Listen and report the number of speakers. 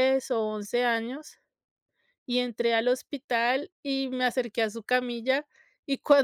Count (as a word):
one